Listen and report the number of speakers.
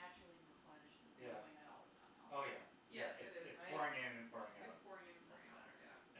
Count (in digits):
3